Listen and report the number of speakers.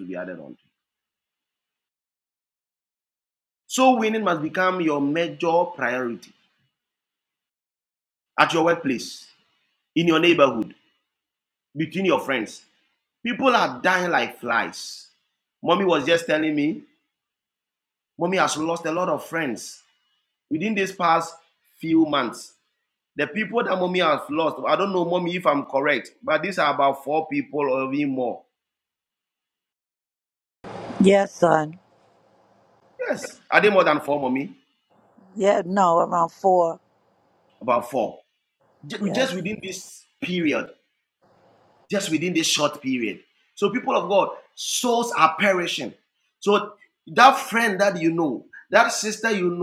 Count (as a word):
two